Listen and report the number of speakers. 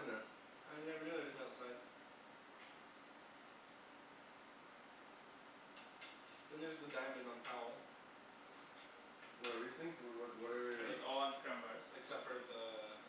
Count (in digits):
3